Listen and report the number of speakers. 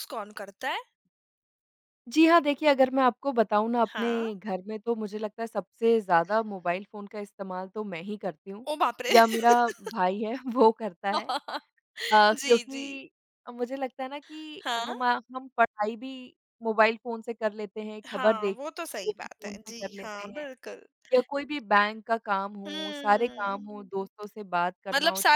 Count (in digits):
2